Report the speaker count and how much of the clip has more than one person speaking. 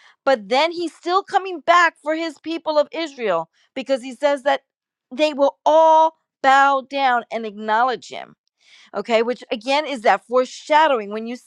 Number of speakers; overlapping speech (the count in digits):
1, no overlap